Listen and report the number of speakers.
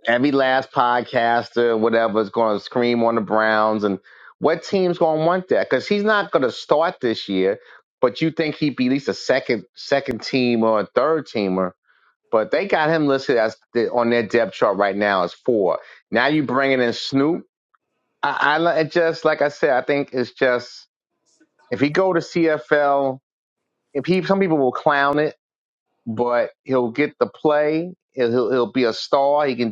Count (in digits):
1